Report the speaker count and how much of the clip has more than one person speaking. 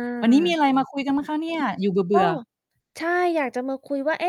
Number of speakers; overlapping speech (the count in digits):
2, about 10%